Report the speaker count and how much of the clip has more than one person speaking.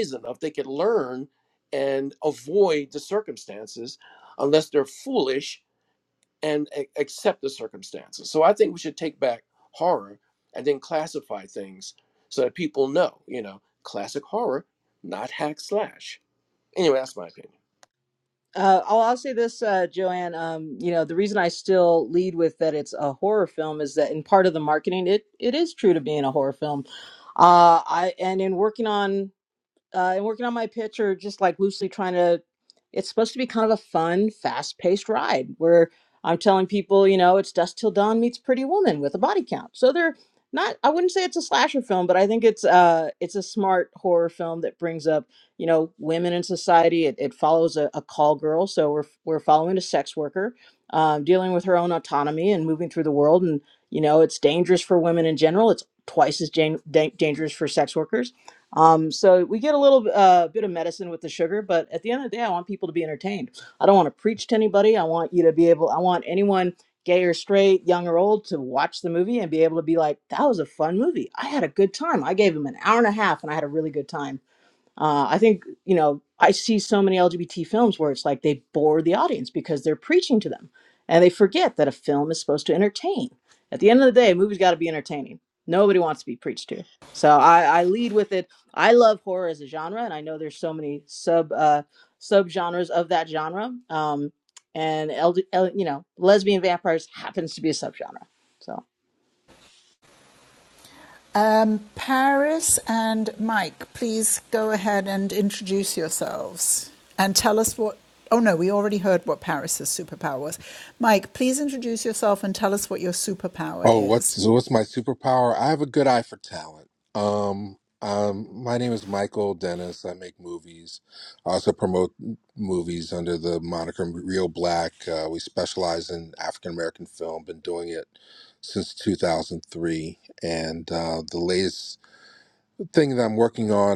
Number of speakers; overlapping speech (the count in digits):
4, under 1%